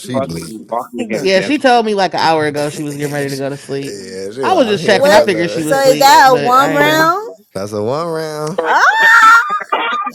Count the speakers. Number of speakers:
4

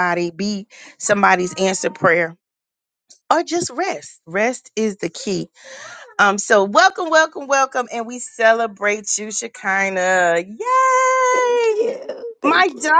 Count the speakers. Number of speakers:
2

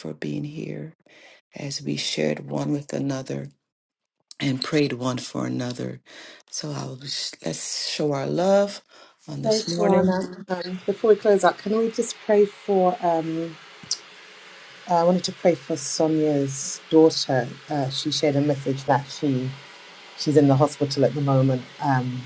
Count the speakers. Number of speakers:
2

